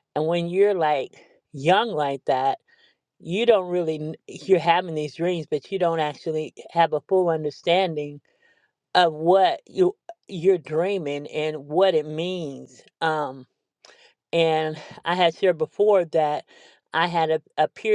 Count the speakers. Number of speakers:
1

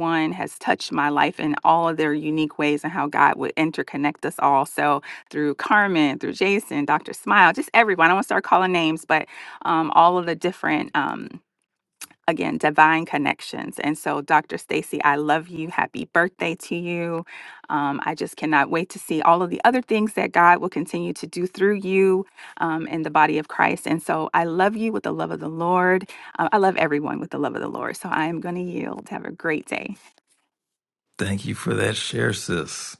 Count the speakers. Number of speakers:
2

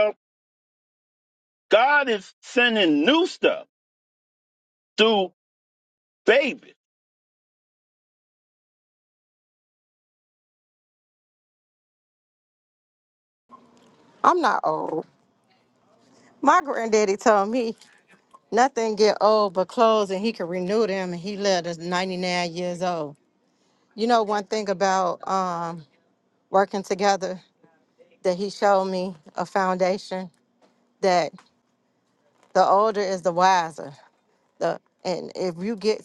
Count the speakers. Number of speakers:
2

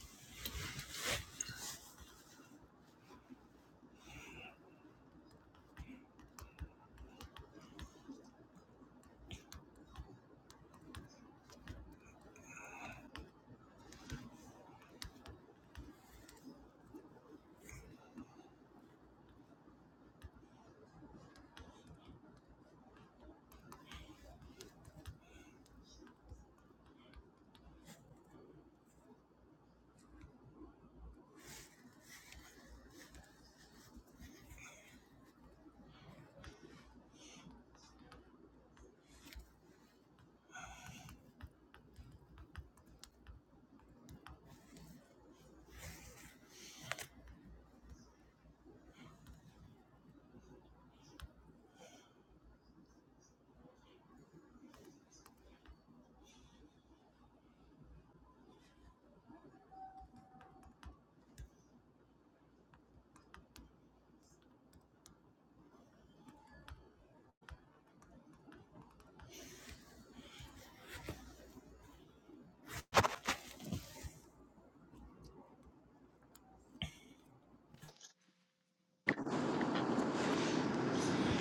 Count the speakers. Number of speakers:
0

